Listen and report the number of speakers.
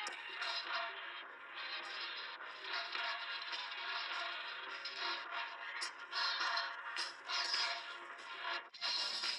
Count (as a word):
zero